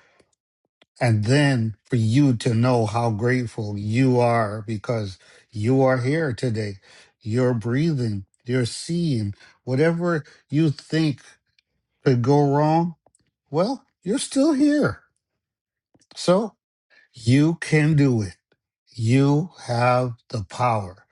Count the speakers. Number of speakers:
one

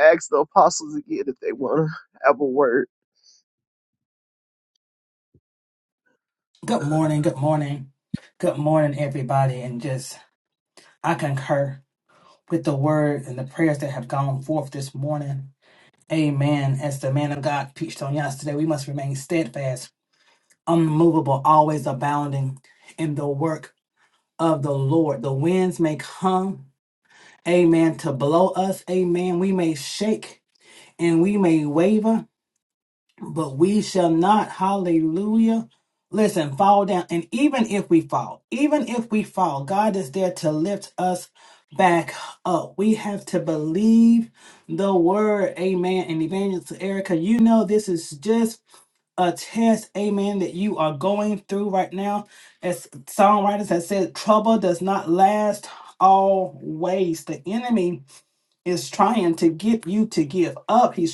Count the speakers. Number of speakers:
two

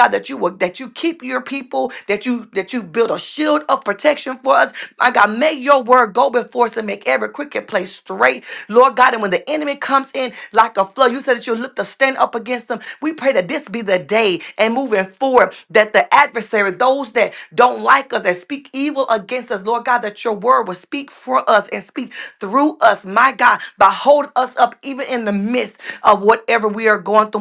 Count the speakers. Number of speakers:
one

